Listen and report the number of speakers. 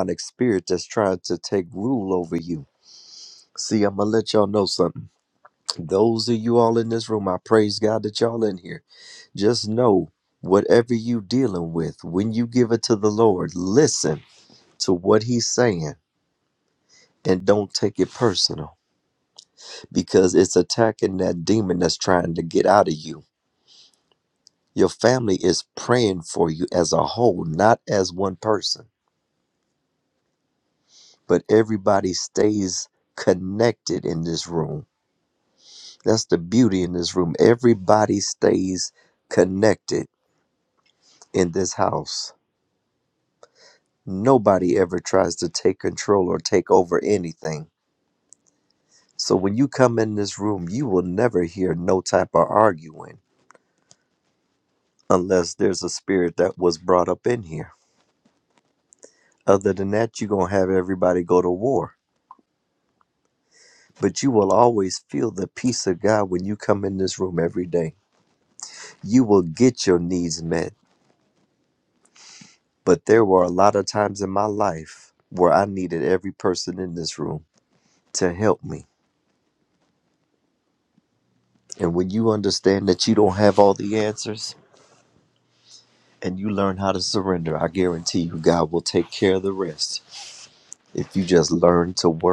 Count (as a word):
one